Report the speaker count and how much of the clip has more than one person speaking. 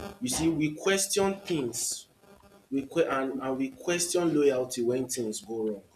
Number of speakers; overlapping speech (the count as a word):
one, no overlap